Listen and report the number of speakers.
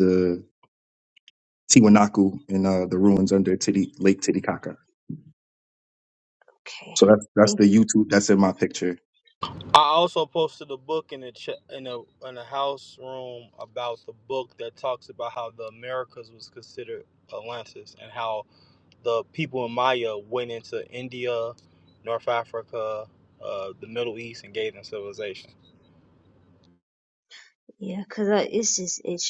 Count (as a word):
three